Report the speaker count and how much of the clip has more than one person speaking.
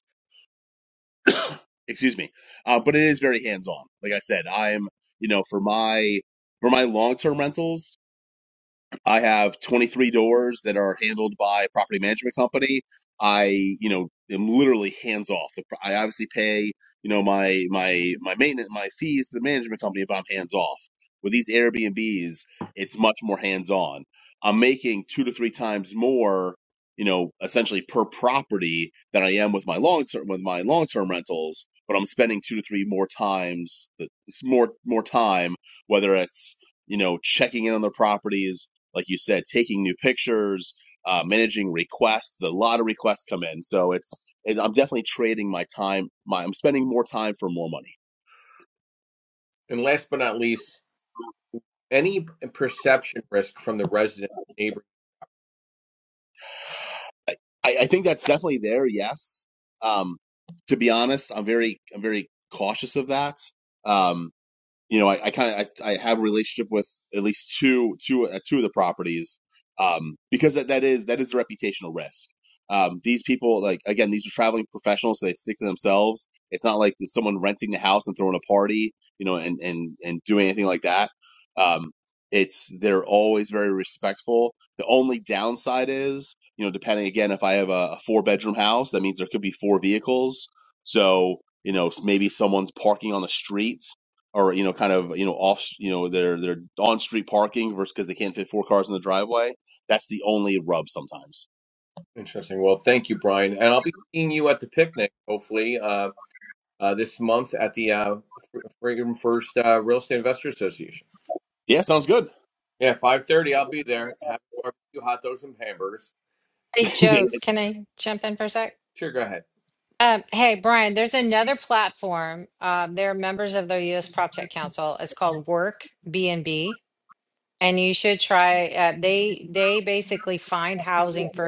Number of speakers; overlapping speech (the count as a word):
three, under 1%